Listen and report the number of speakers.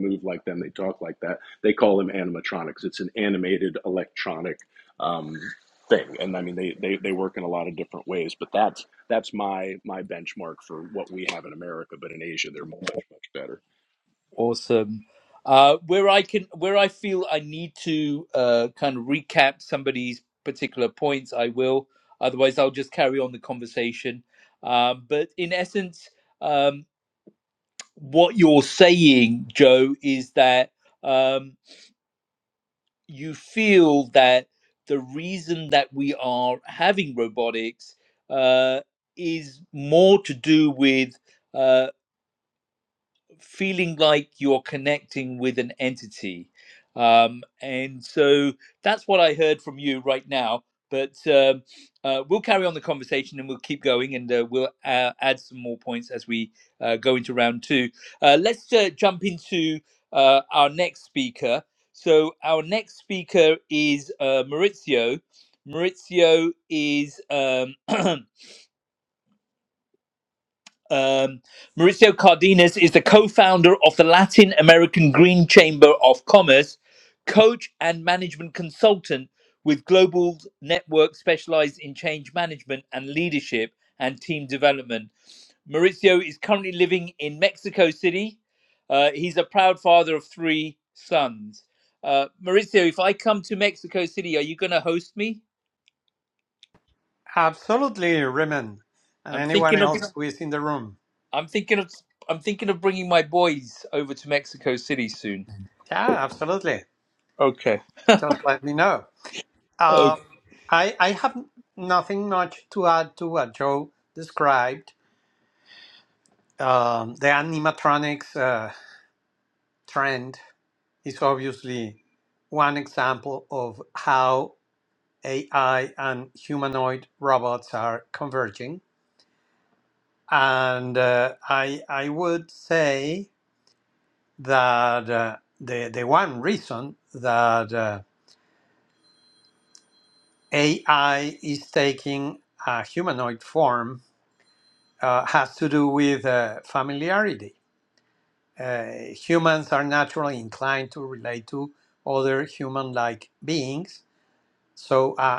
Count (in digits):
3